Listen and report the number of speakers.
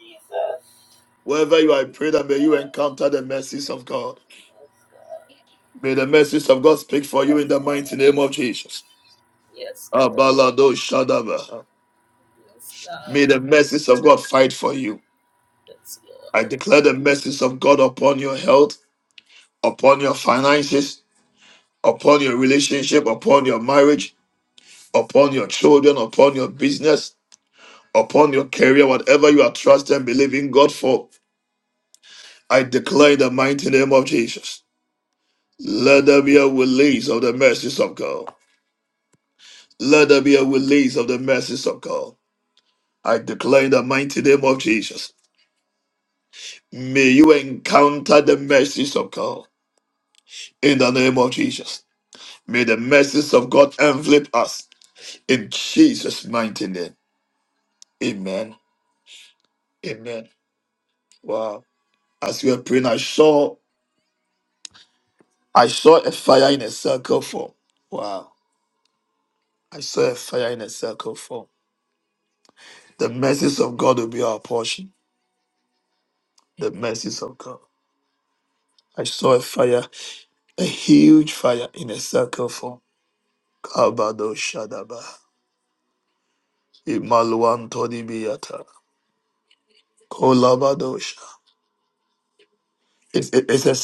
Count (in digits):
2